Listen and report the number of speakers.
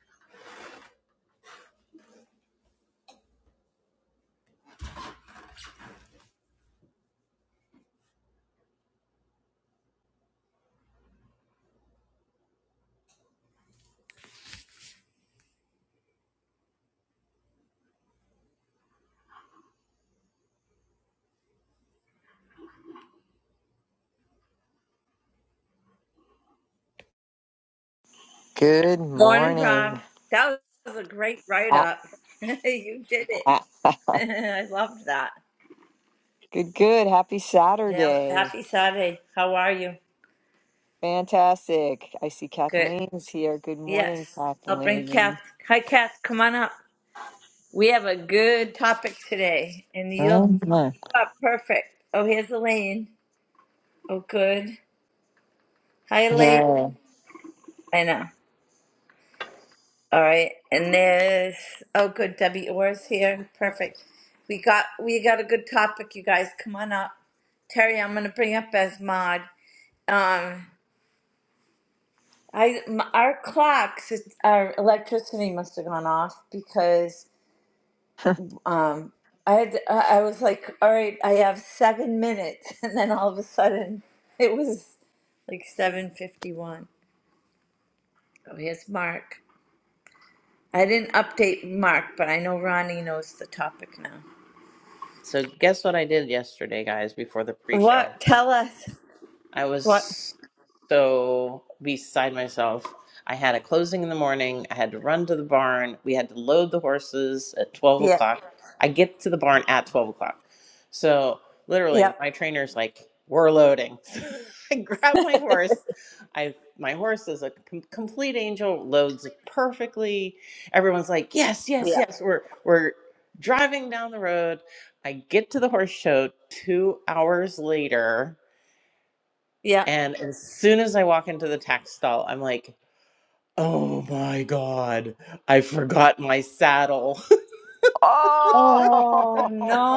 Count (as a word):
three